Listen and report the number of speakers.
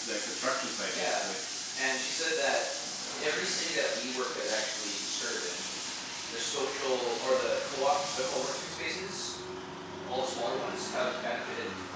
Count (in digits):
2